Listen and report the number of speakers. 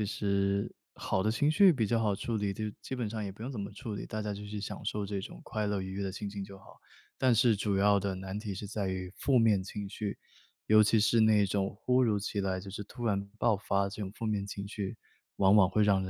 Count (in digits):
1